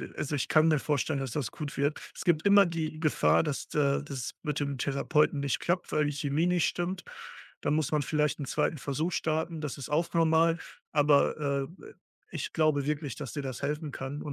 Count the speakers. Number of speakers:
one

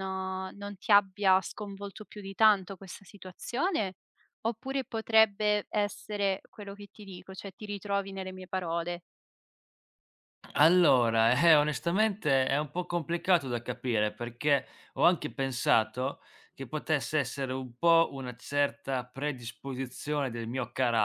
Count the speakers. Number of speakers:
two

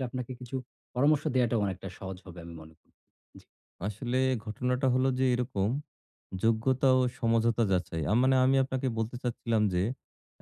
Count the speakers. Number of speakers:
two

